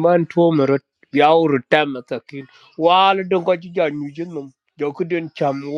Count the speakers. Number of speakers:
1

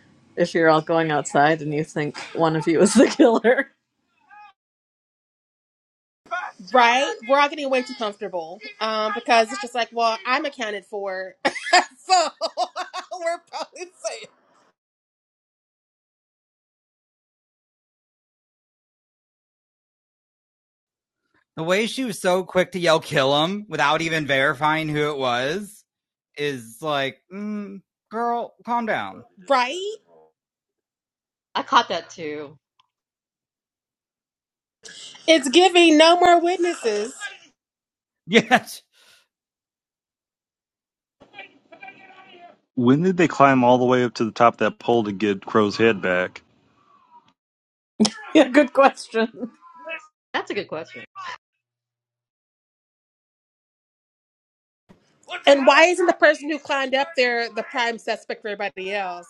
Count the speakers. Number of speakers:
5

